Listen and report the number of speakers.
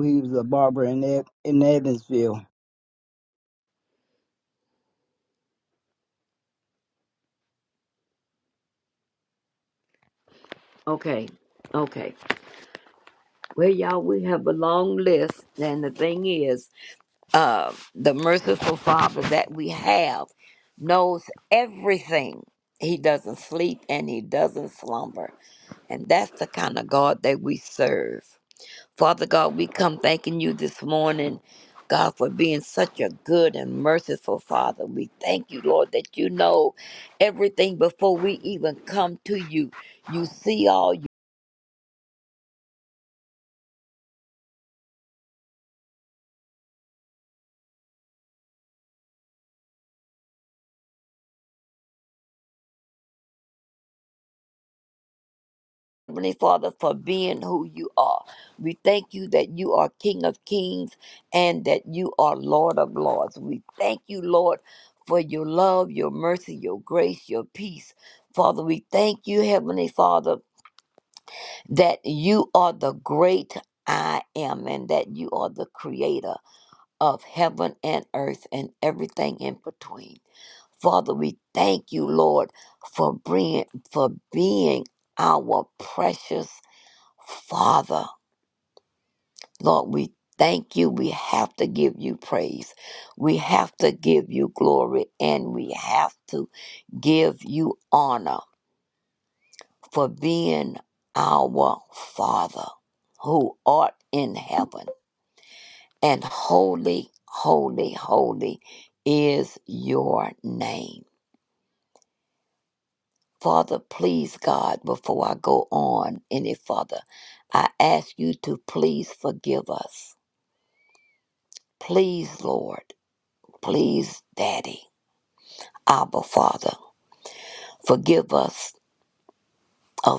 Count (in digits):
2